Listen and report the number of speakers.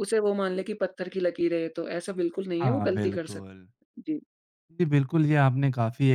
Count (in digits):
2